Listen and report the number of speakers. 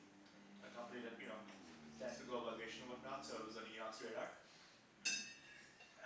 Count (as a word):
one